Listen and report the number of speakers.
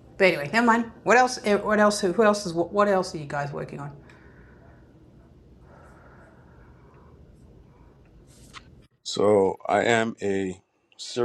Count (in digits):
2